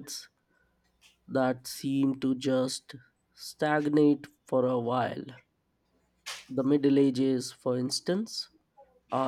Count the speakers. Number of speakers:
1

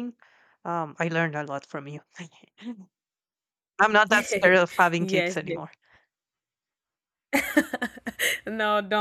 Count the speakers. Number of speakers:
2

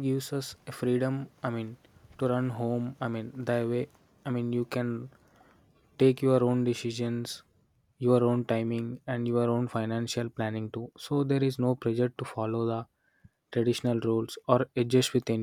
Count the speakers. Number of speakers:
1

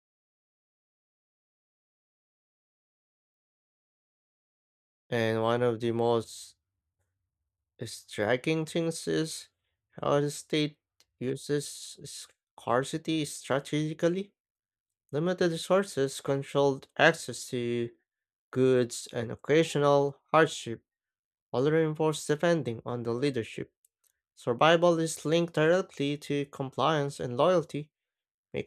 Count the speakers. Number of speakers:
1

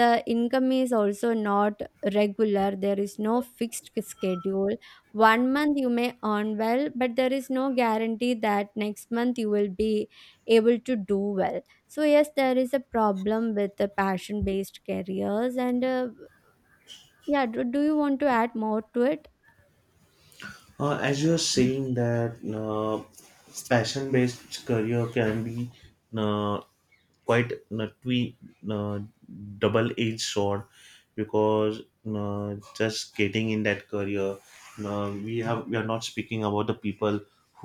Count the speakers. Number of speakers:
2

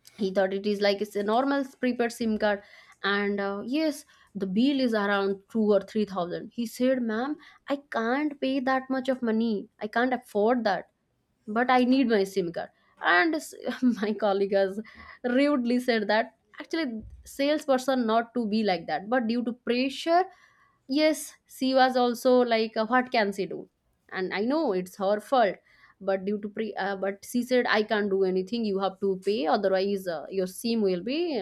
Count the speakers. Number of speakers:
1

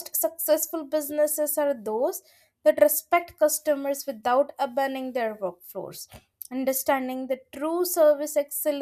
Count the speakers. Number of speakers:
1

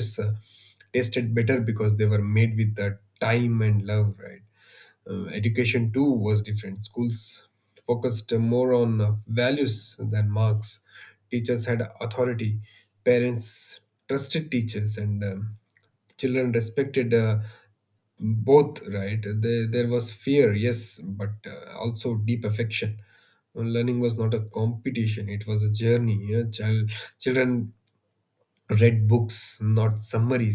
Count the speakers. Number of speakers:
1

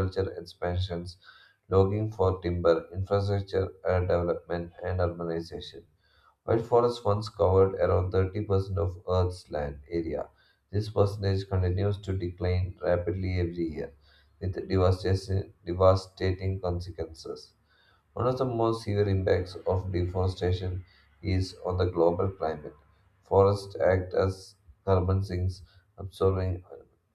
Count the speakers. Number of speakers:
1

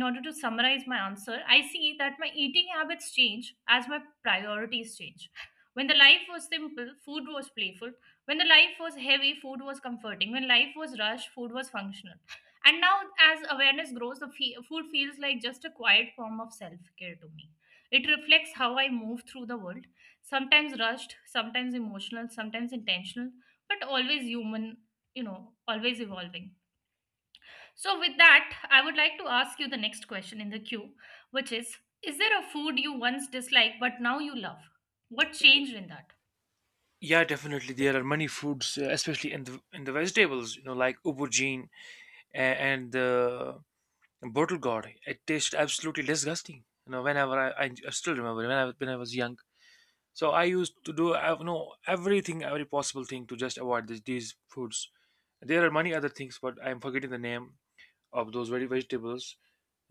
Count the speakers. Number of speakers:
2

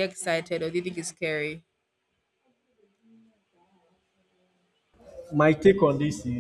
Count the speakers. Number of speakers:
2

